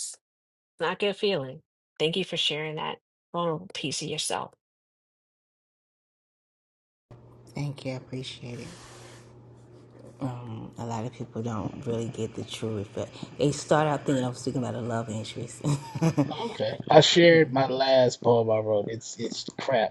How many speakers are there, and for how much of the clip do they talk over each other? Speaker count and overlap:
3, about 1%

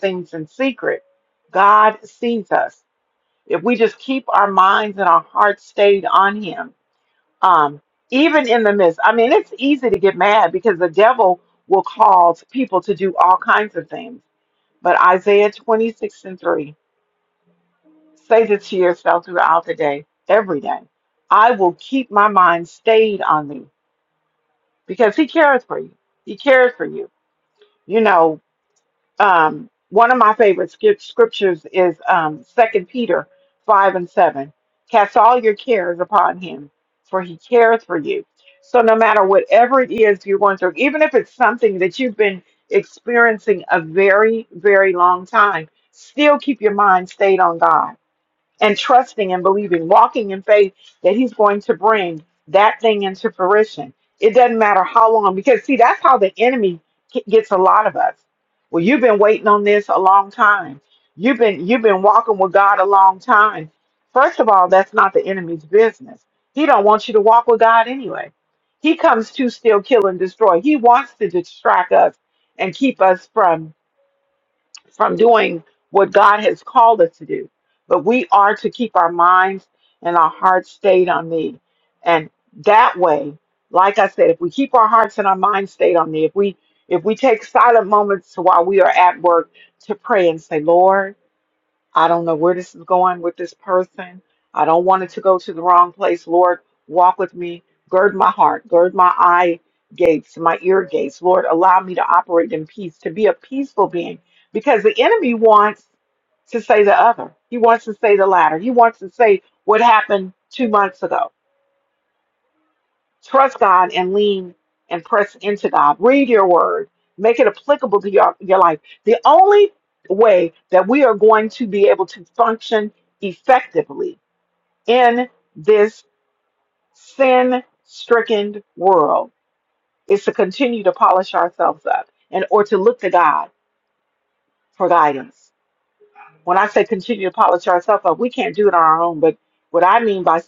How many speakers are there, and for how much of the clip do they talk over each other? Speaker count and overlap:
1, no overlap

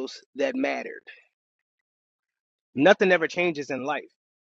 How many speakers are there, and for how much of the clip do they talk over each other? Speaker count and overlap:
1, no overlap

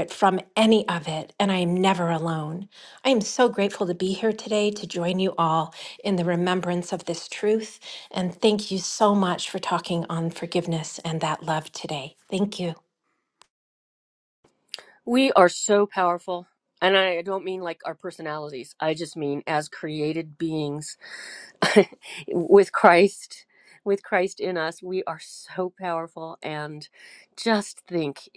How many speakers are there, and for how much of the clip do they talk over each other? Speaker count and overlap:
2, no overlap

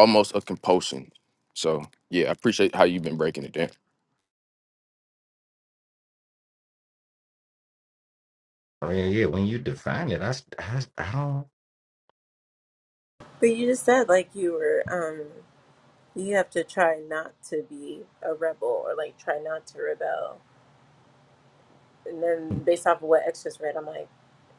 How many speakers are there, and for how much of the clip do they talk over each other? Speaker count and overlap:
3, under 1%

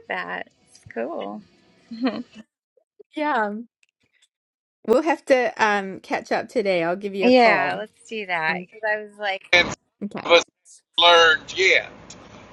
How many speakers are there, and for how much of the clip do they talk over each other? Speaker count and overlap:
3, about 5%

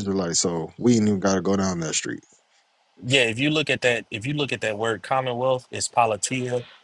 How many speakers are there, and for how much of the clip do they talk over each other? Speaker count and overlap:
2, no overlap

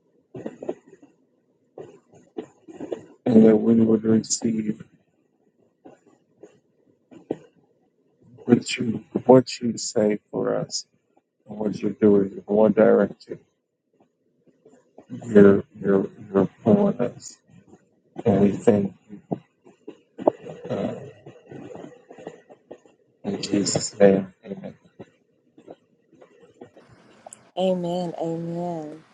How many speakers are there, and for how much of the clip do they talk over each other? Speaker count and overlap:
2, no overlap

